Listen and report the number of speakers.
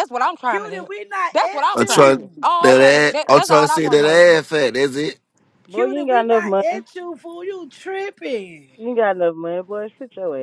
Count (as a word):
four